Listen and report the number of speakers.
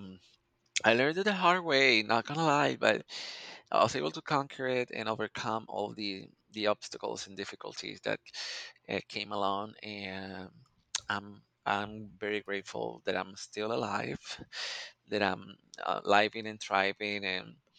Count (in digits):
1